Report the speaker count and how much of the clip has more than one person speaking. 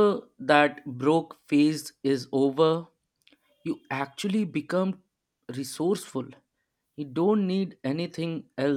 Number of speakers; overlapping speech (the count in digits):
1, no overlap